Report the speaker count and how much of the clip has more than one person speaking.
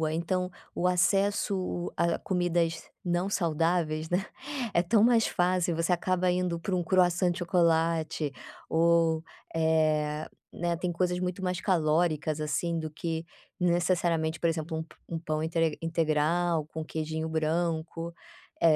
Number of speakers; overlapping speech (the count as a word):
one, no overlap